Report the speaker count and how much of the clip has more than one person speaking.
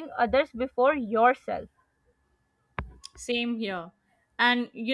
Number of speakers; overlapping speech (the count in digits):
2, no overlap